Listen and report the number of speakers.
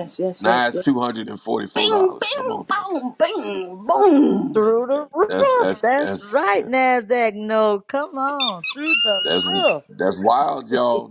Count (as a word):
three